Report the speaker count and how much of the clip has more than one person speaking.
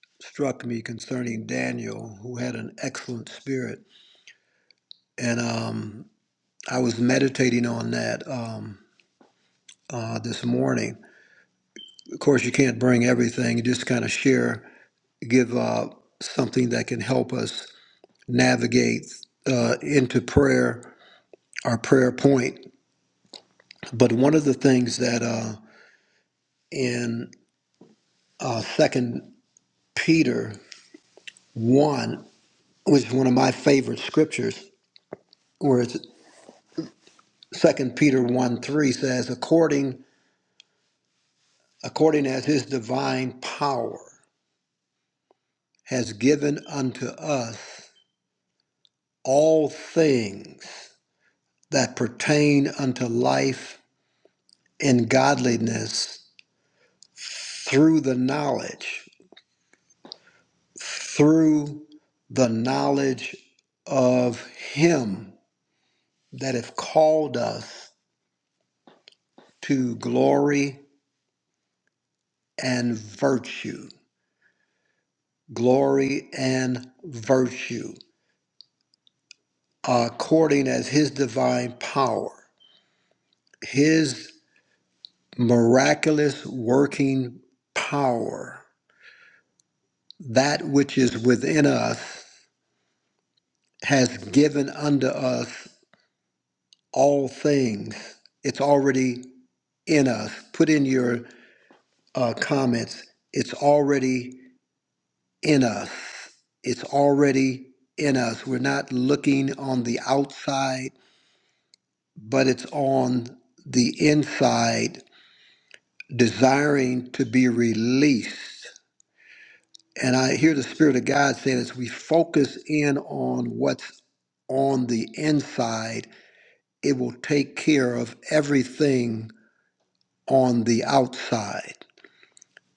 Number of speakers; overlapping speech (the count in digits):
1, no overlap